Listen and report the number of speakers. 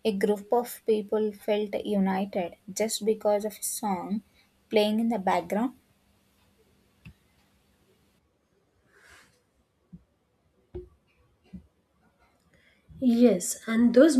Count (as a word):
two